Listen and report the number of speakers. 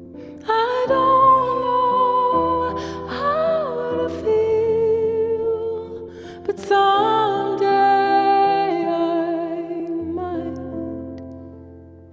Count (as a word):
one